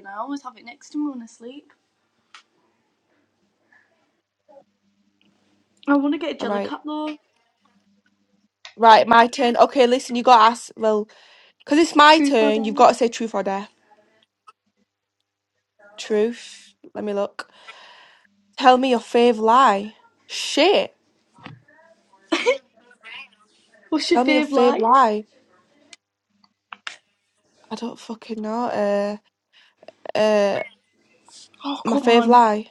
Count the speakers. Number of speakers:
2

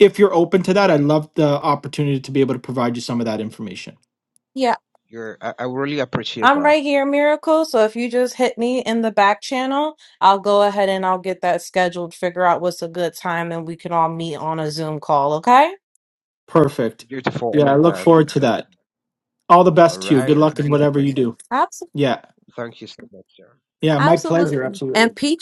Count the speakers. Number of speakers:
3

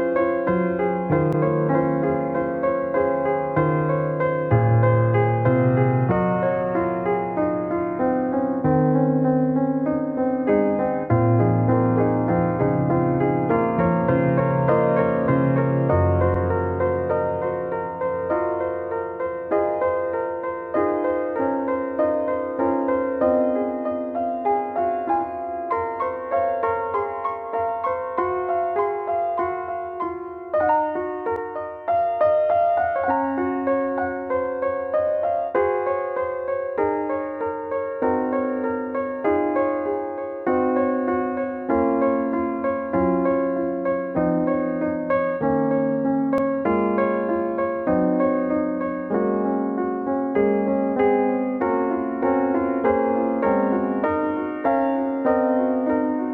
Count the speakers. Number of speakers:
0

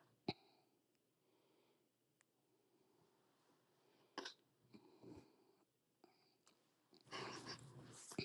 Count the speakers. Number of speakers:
0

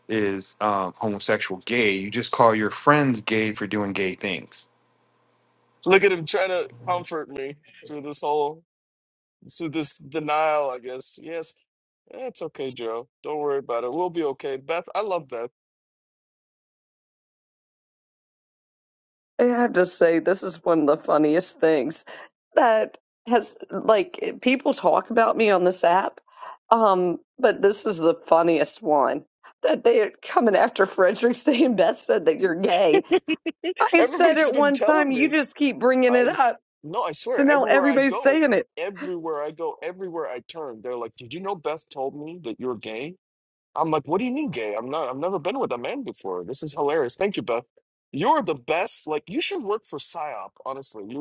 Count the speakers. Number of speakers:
3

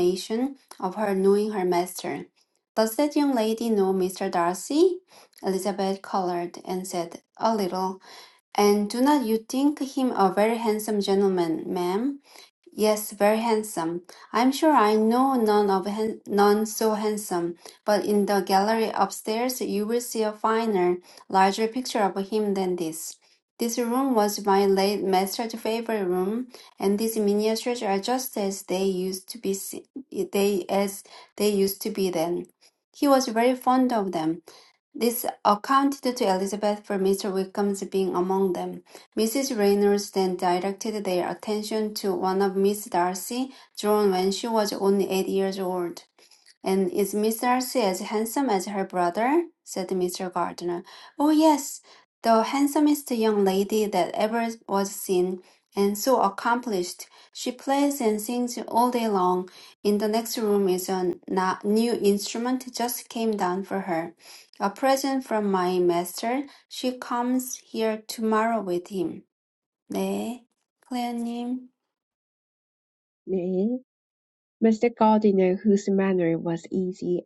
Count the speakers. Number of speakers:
2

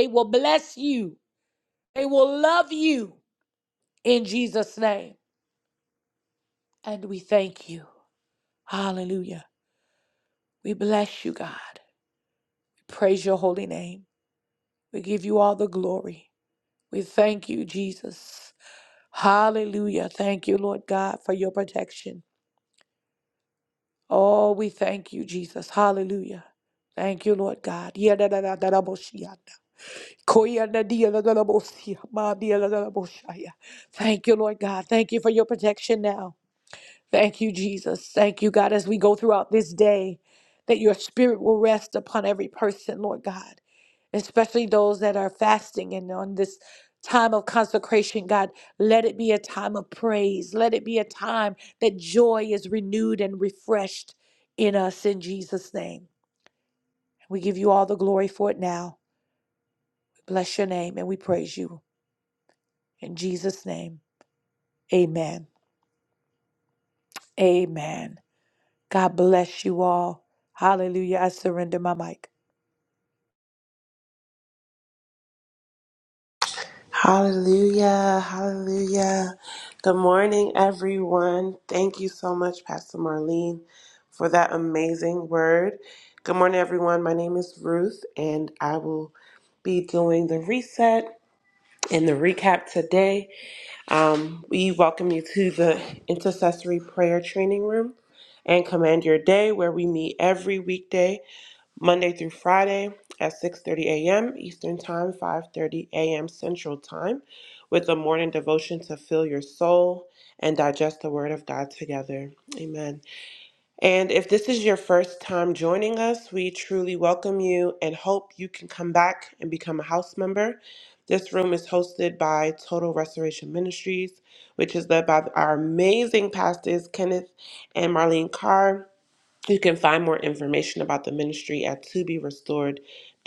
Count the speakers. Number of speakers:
2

